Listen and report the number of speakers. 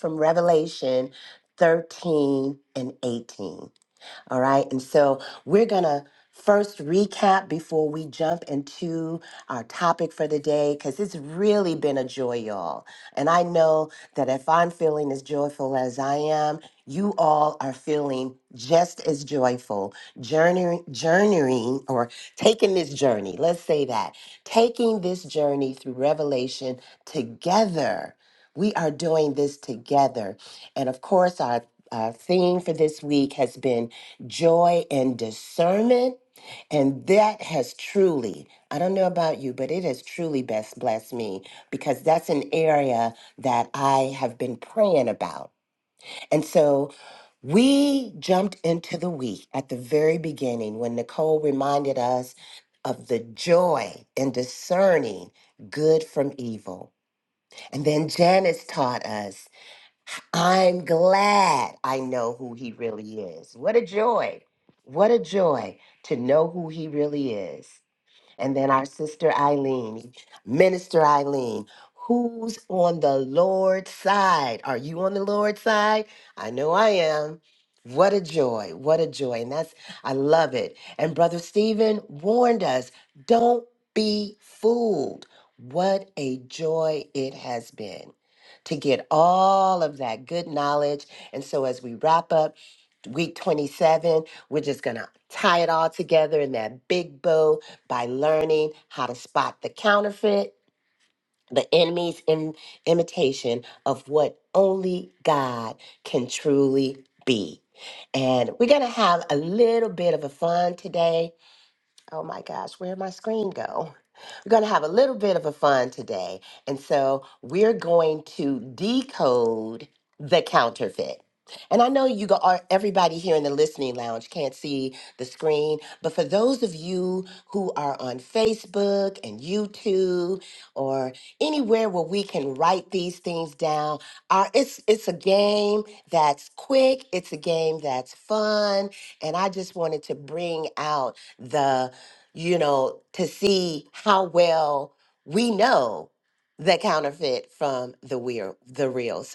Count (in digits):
1